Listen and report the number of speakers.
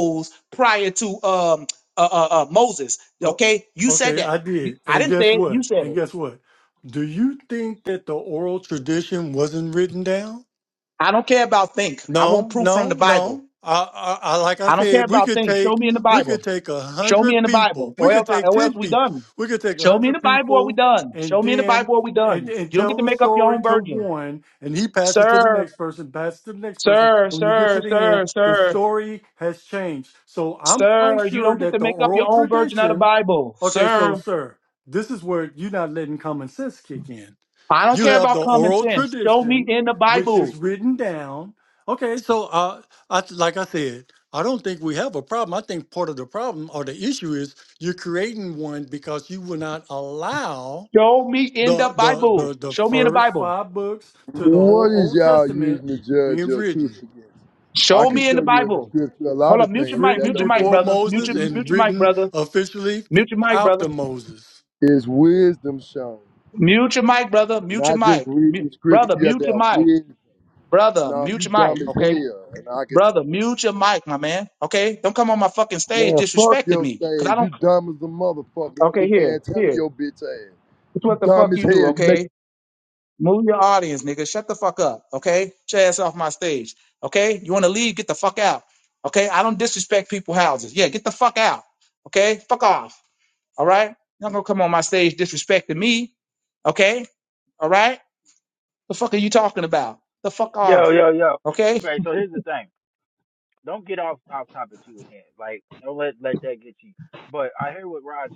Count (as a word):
four